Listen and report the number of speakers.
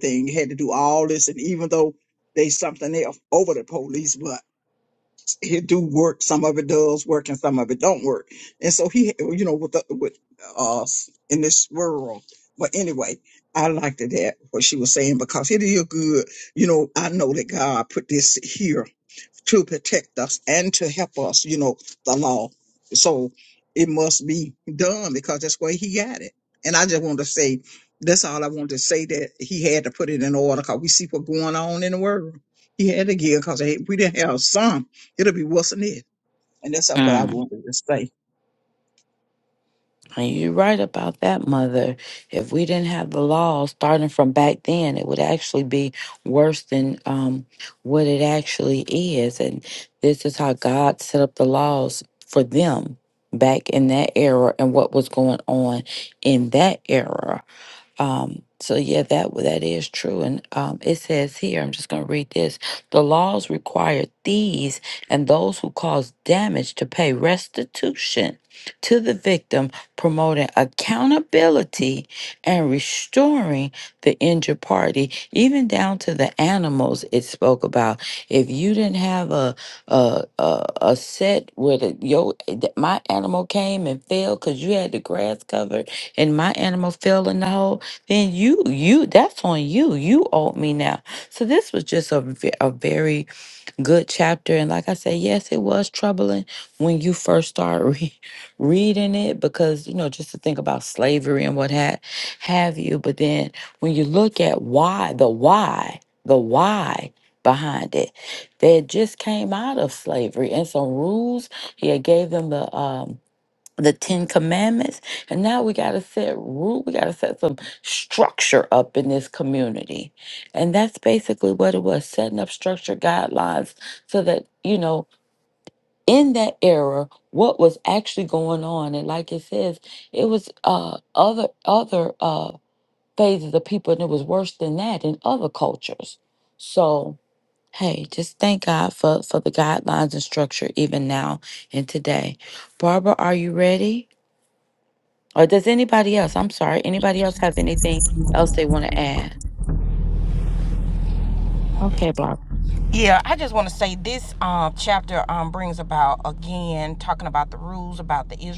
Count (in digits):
3